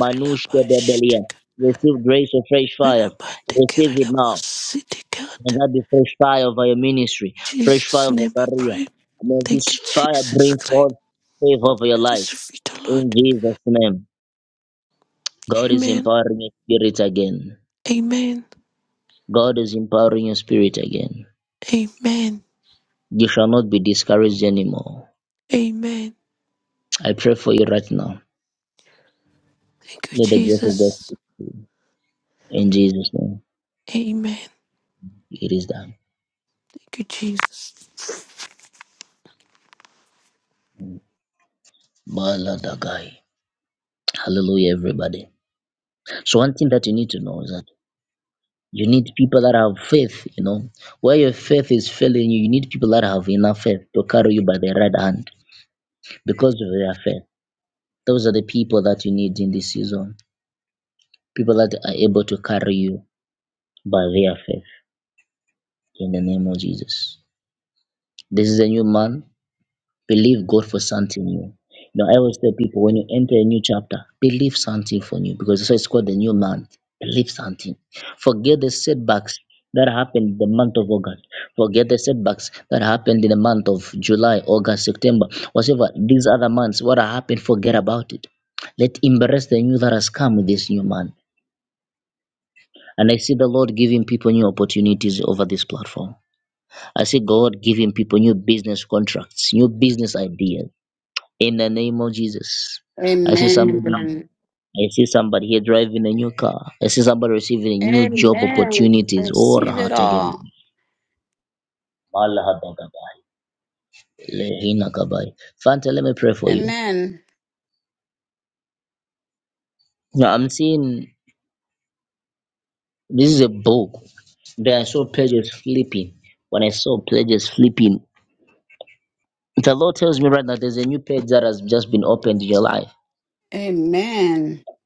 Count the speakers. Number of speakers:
three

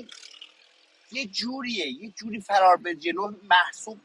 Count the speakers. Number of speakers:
one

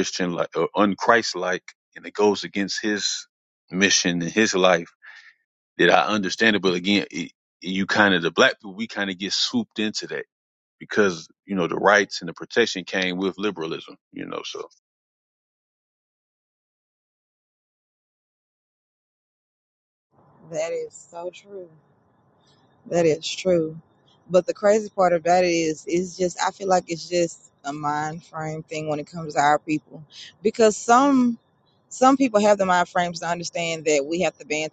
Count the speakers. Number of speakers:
two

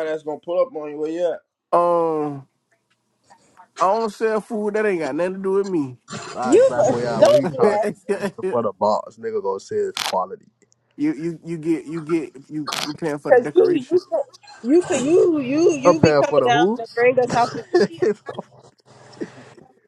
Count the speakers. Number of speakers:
four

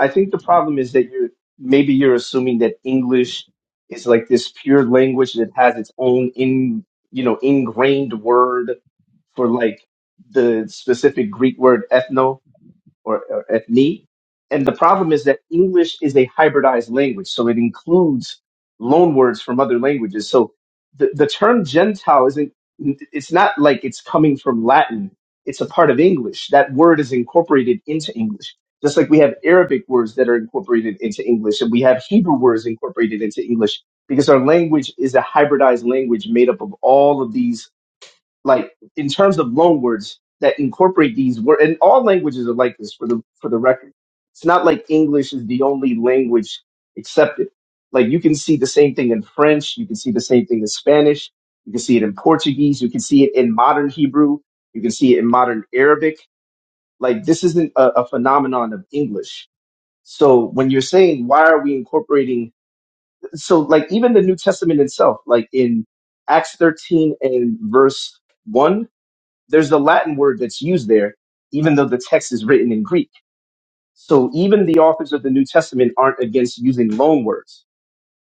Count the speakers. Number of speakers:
one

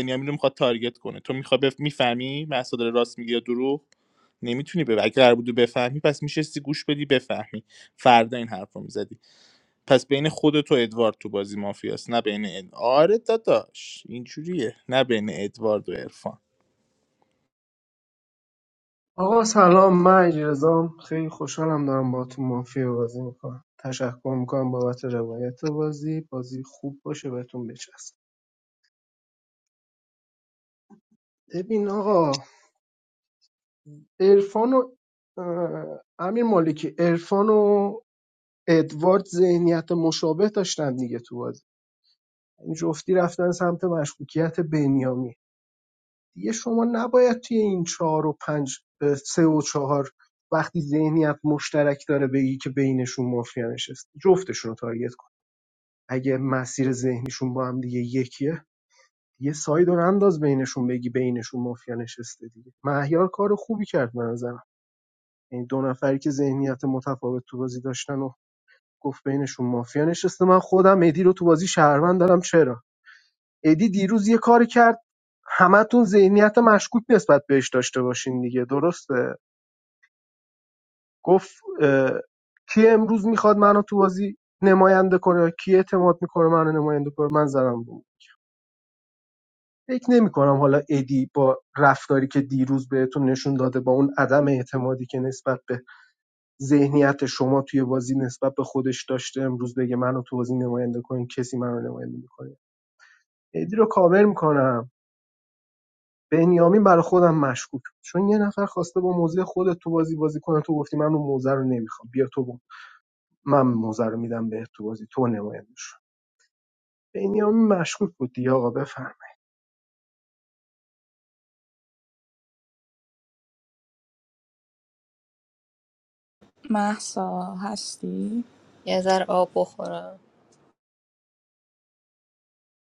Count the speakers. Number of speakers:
four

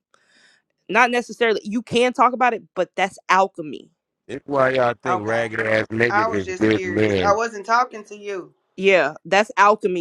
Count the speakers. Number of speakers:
three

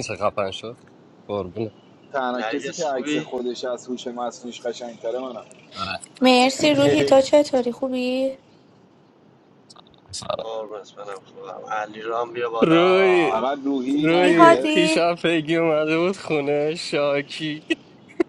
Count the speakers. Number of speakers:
four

